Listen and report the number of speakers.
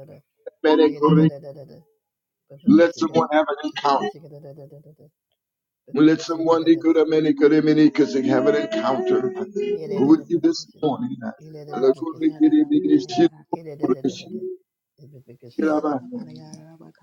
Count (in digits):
3